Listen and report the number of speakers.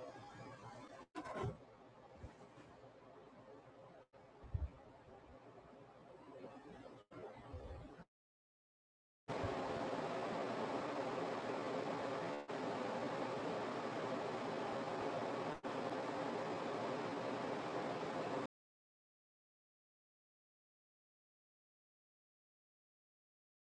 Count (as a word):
zero